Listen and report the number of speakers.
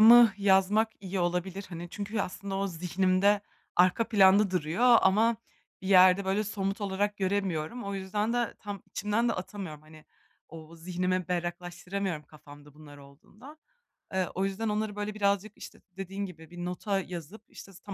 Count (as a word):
one